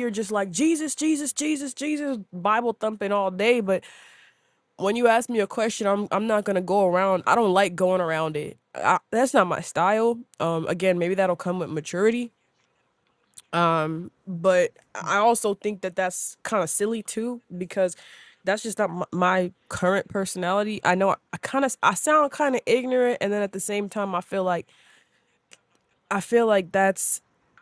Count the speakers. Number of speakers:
one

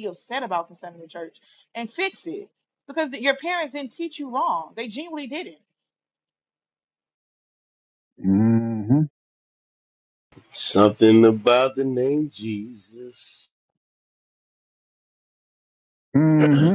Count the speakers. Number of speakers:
three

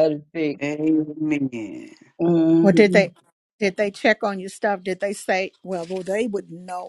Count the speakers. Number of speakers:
three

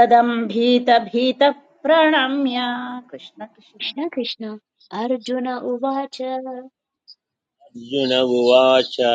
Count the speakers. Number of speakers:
three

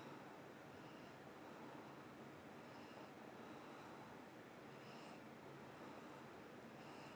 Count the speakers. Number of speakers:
zero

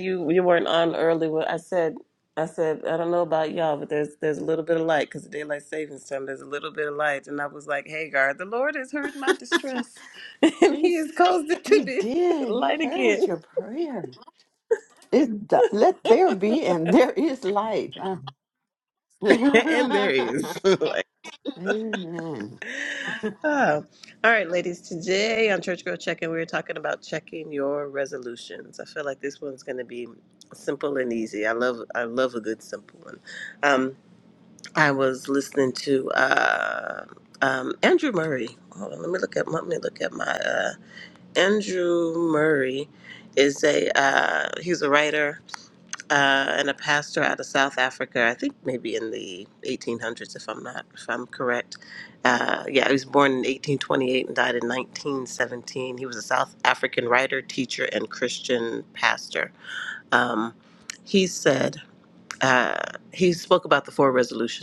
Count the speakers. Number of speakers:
two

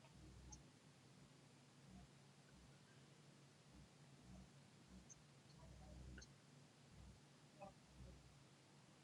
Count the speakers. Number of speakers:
zero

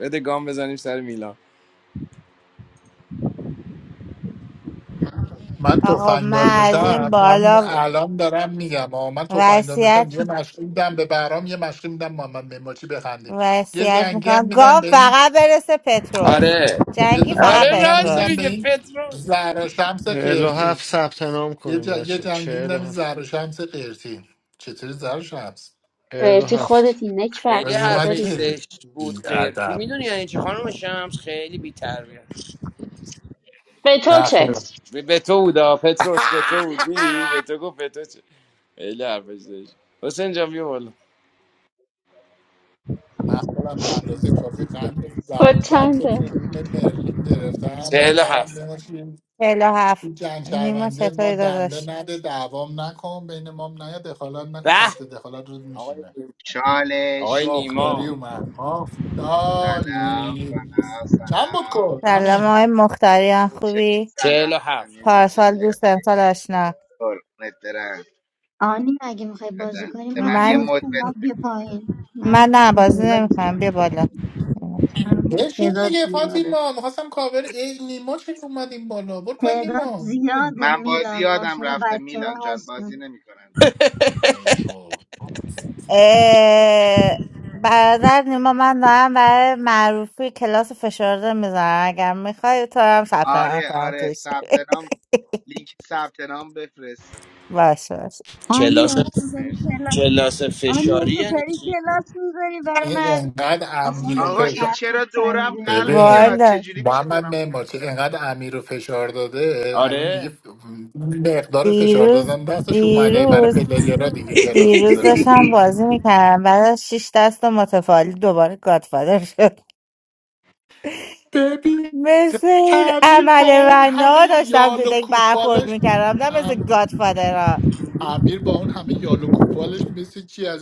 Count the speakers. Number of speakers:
seven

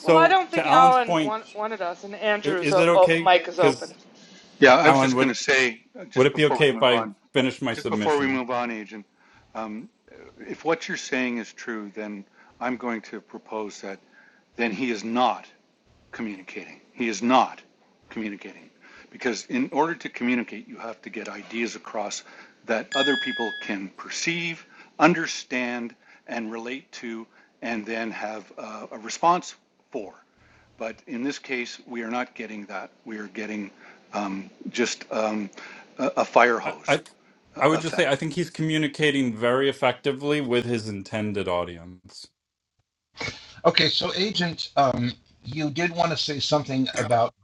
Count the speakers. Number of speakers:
four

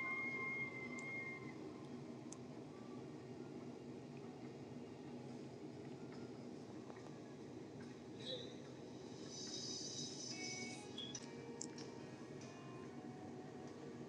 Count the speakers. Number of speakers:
zero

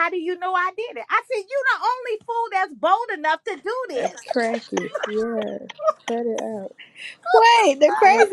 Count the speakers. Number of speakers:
three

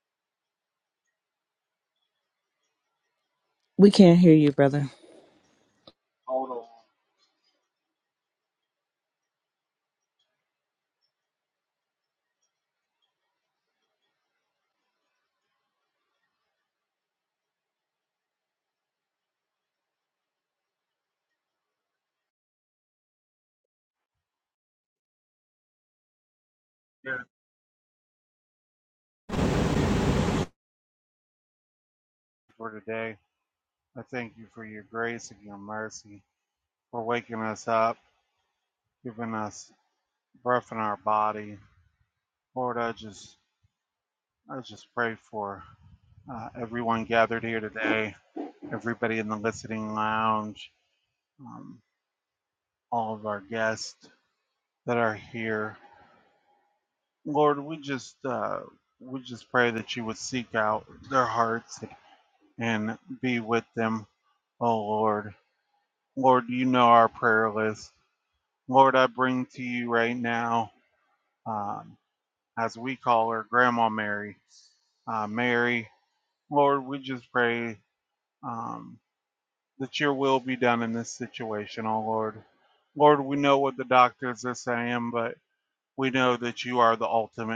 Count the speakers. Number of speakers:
two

